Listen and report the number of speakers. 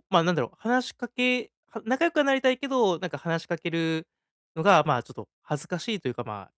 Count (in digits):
1